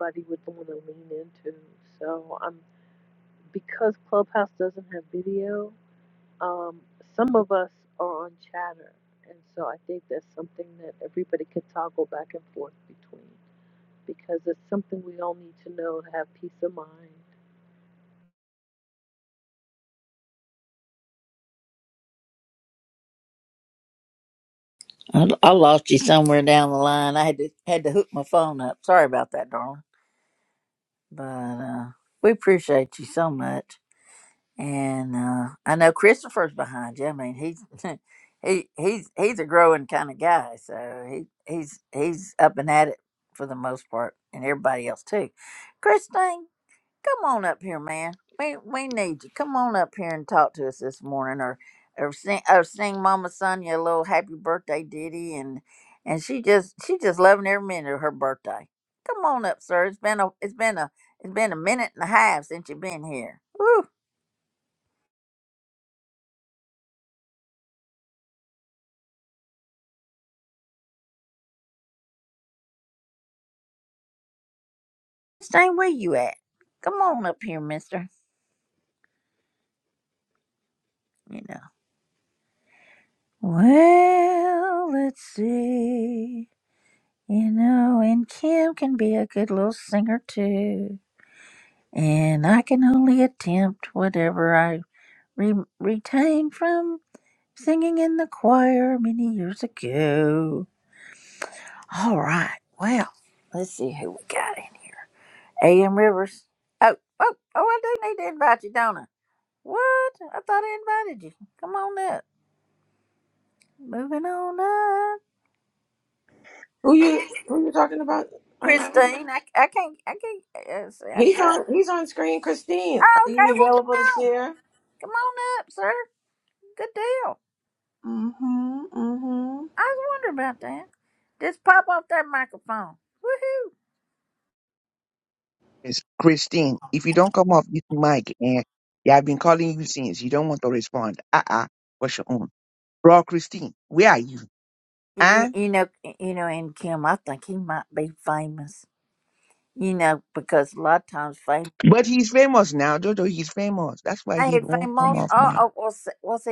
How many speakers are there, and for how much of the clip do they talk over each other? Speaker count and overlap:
four, about 2%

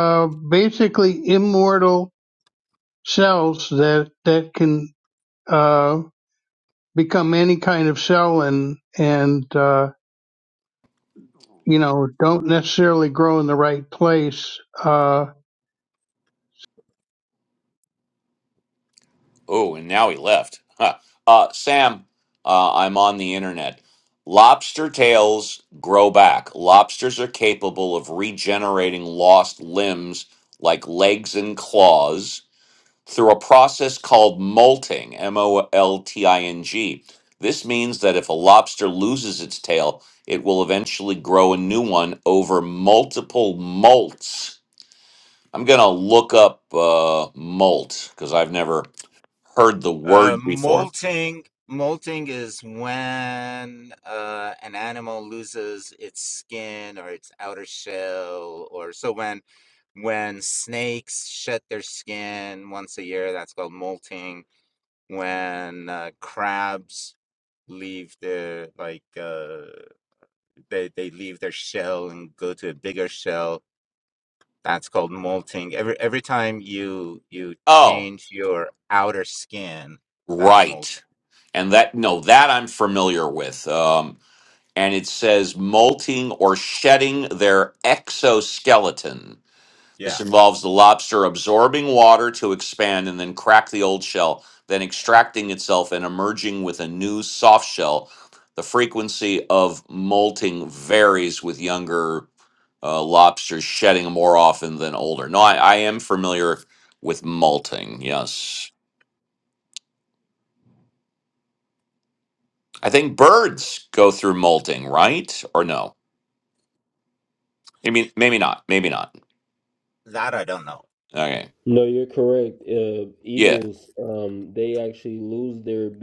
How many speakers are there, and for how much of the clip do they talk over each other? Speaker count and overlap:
four, about 2%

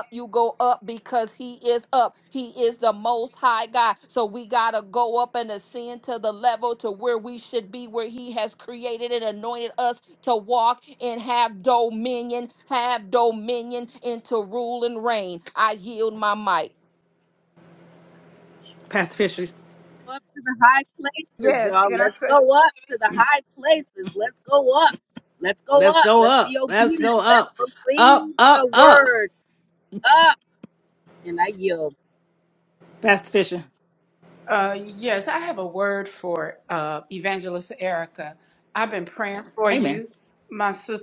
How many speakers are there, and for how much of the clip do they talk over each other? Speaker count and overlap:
four, about 10%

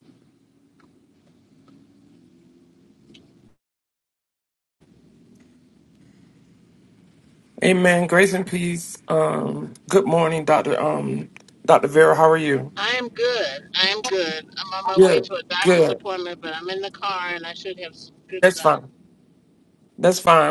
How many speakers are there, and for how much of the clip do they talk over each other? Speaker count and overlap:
two, about 5%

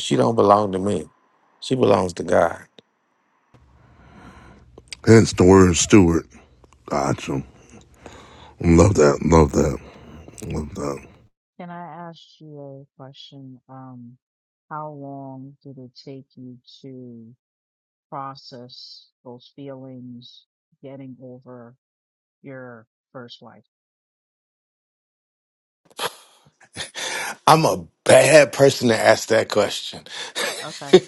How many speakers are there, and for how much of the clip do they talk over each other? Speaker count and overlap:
three, no overlap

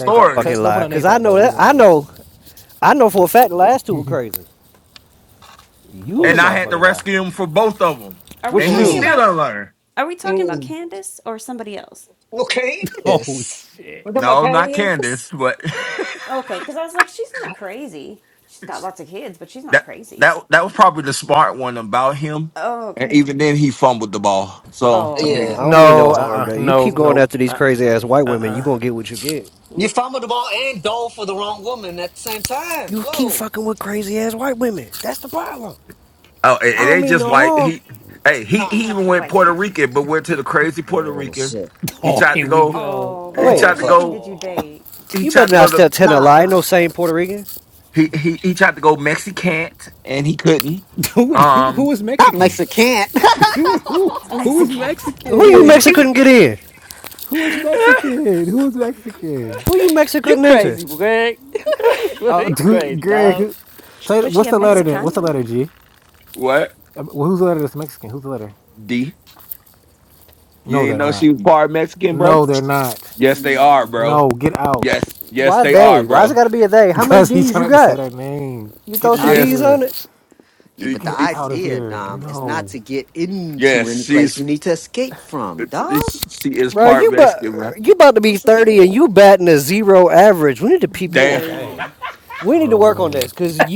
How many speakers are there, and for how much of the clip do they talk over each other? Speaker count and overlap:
five, about 32%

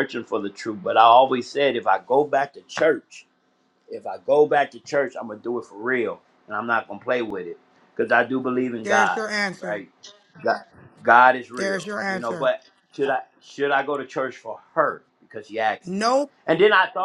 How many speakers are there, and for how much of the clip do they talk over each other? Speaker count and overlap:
two, about 9%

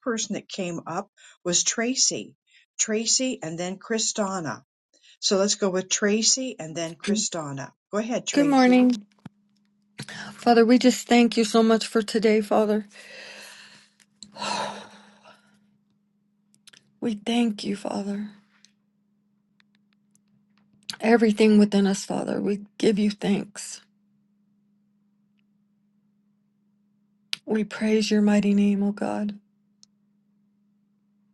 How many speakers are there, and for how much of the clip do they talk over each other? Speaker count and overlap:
two, about 2%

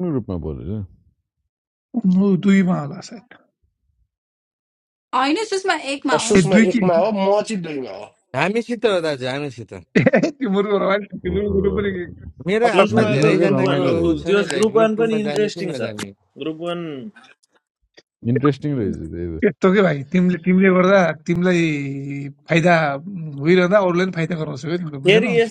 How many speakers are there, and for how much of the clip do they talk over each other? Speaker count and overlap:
six, about 20%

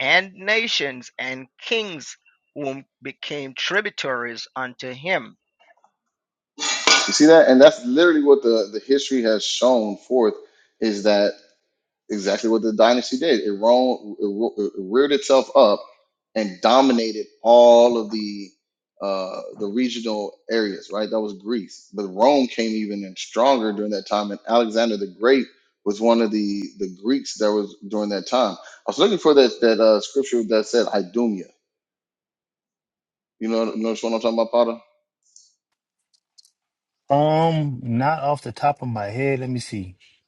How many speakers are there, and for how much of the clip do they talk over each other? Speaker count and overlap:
three, no overlap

